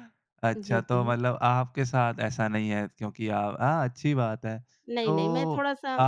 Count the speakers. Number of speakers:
2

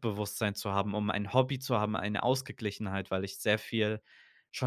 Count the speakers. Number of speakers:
1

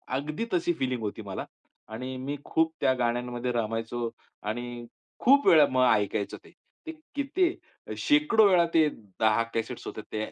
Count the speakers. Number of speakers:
1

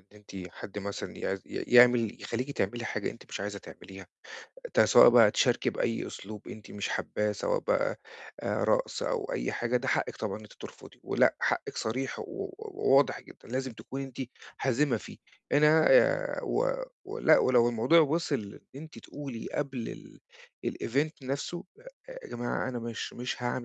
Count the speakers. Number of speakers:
1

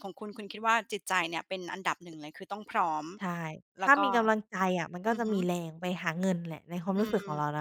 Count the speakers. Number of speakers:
2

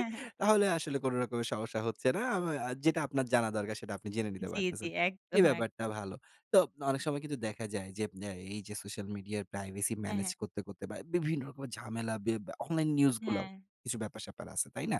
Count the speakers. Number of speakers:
2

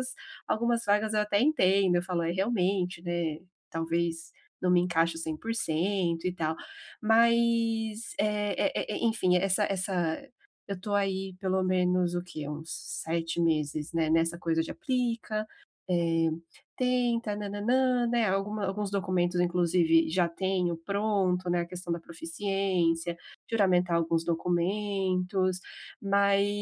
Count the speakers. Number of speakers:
1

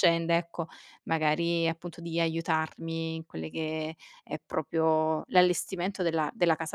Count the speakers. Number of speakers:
1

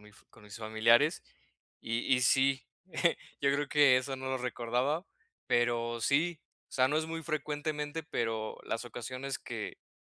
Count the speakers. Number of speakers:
1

